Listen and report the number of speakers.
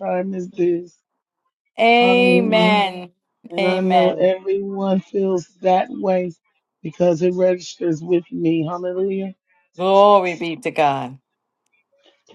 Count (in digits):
2